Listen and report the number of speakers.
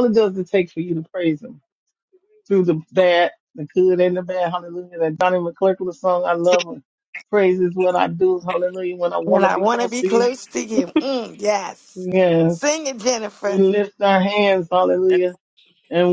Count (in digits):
2